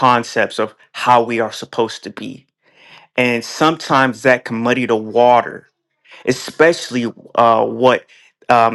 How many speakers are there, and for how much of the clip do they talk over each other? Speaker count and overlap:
1, no overlap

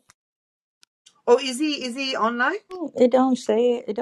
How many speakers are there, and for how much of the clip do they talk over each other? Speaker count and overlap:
2, no overlap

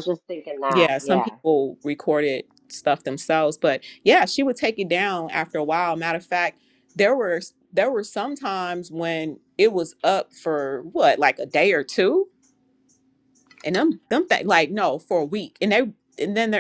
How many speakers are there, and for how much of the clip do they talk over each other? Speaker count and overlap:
2, about 4%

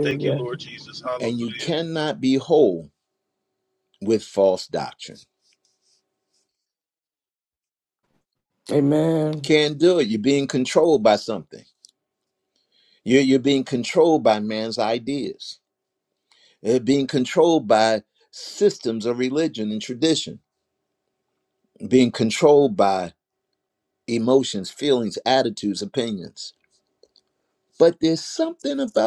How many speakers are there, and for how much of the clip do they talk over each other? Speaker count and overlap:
2, no overlap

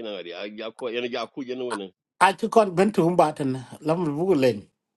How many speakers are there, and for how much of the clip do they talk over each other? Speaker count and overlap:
2, no overlap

